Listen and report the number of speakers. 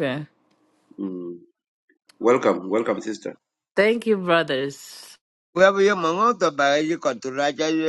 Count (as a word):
three